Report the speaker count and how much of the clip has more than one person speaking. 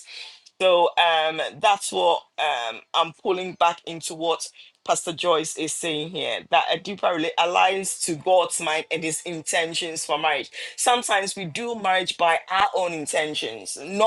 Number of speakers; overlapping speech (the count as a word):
one, no overlap